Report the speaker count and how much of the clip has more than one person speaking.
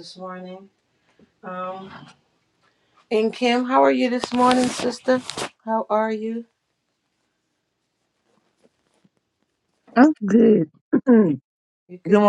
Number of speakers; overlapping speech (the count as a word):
two, about 2%